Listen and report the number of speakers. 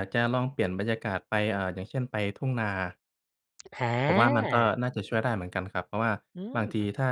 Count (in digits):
2